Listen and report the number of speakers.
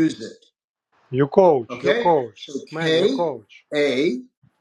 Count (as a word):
two